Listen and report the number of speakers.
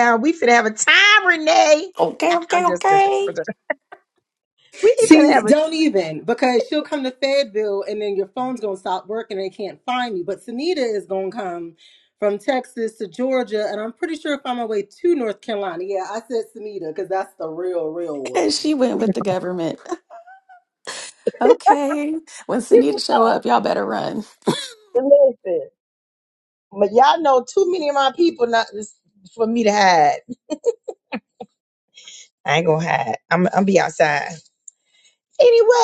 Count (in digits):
3